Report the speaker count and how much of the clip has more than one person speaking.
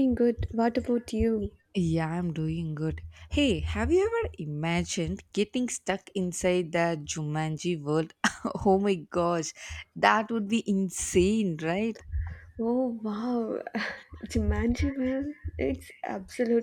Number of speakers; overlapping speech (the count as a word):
two, no overlap